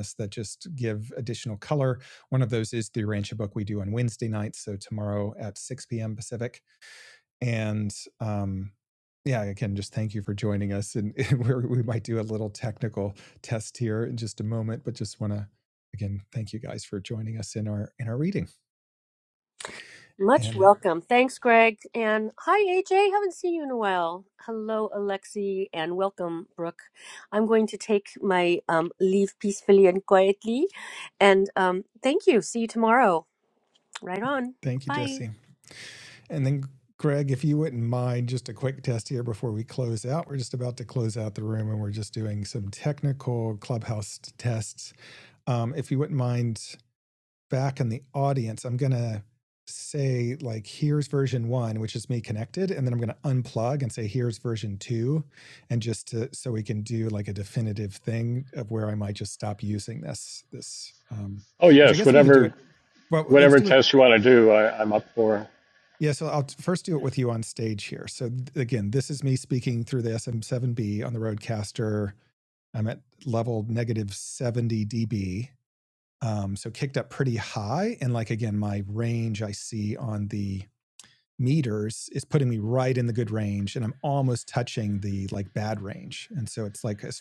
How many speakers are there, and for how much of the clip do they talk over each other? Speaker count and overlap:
three, about 2%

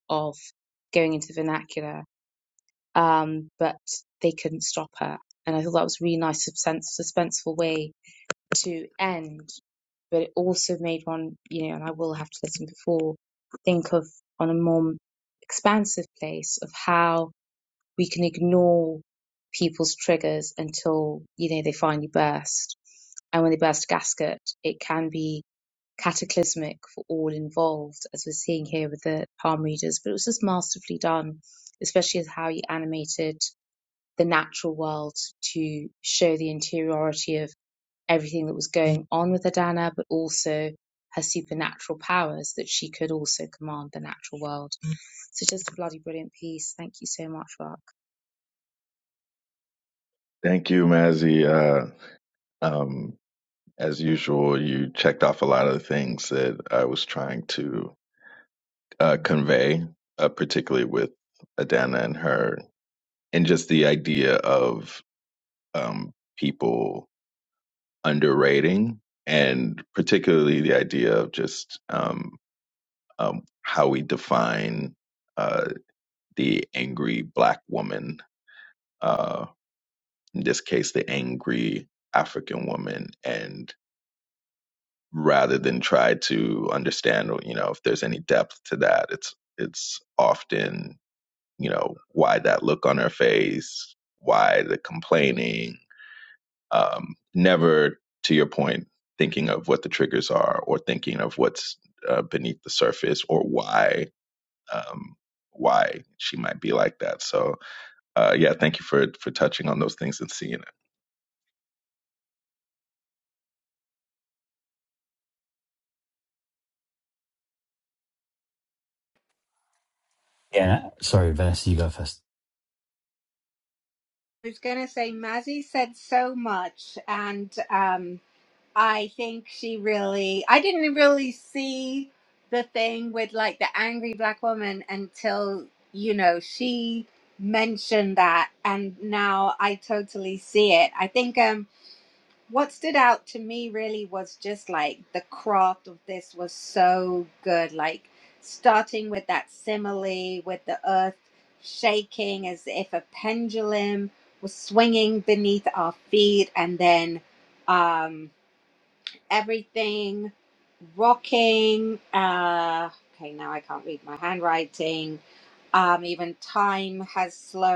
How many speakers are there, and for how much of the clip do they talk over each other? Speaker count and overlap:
four, no overlap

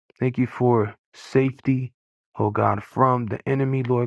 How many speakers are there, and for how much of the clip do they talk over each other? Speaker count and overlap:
one, no overlap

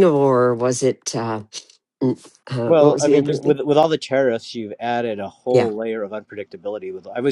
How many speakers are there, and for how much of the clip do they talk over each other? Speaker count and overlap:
two, about 14%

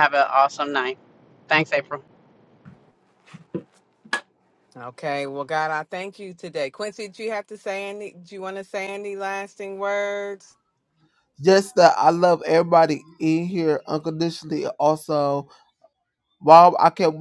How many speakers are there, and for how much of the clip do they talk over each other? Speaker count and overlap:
three, no overlap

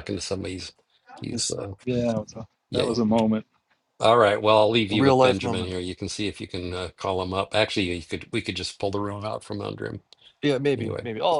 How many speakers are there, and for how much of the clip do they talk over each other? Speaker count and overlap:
three, about 12%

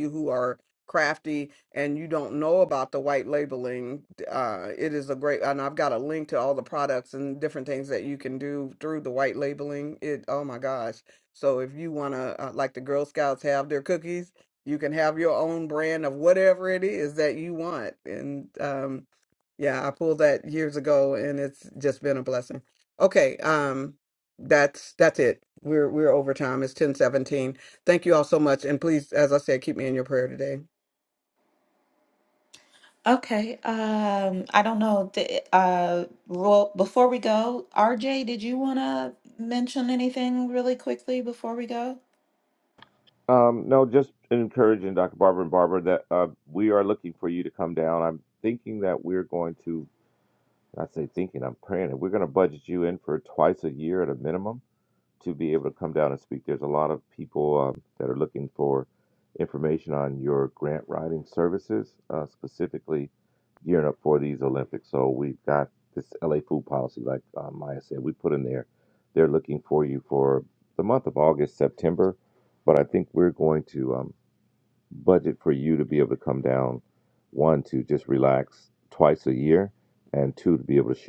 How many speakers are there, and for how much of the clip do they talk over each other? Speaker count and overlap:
three, no overlap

